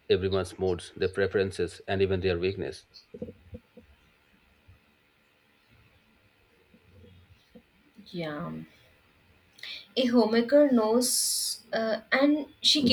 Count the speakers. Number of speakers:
2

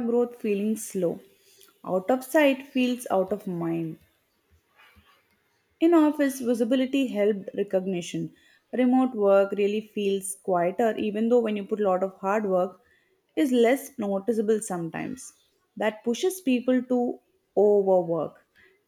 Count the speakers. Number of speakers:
1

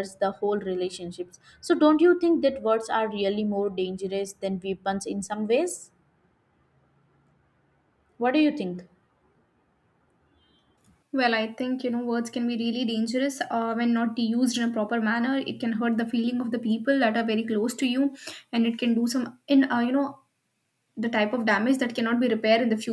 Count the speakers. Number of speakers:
2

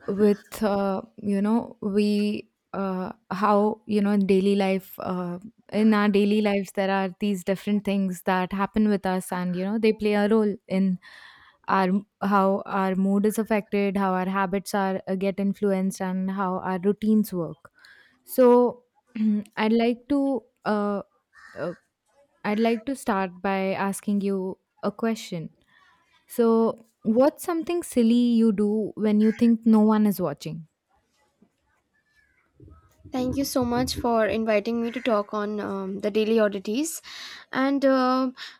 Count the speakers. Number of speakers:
2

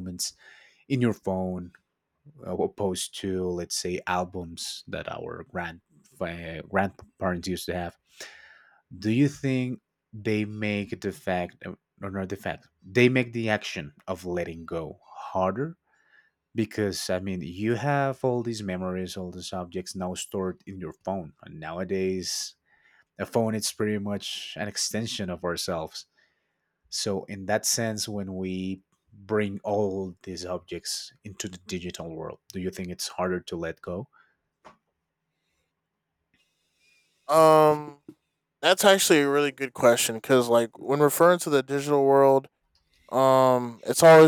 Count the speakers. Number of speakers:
2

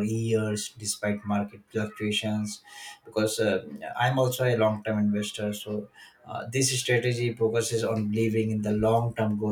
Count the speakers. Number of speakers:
1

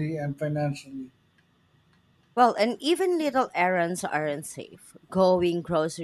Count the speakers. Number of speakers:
2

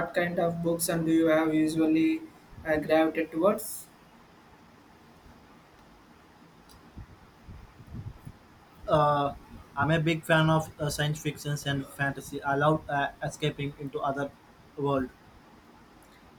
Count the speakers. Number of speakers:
2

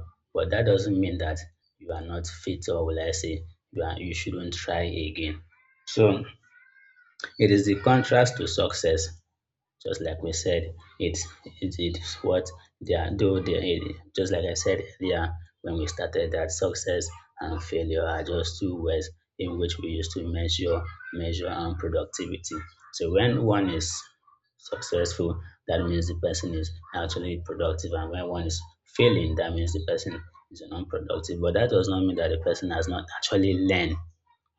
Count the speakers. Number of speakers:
1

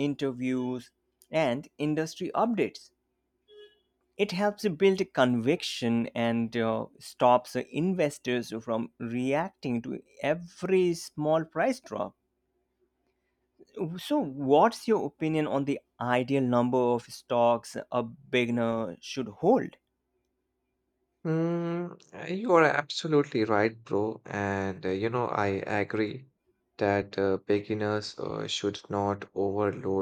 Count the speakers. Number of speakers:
2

